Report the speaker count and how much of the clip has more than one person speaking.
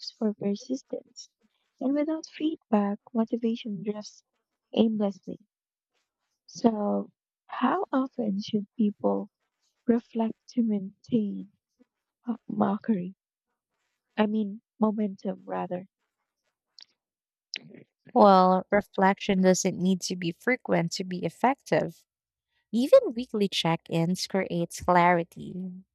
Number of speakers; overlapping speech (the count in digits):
2, no overlap